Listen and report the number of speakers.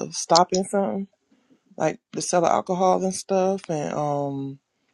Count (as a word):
one